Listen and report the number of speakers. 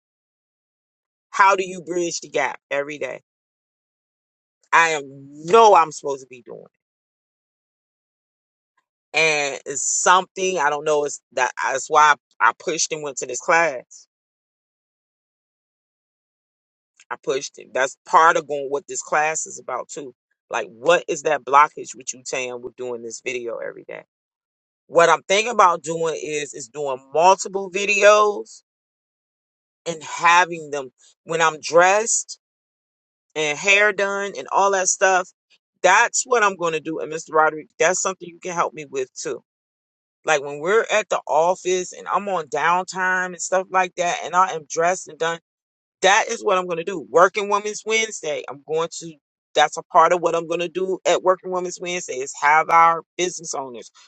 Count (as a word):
one